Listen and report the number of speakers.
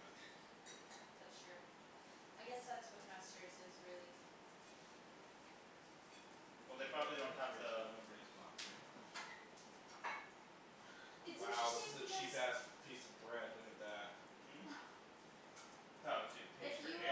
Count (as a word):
three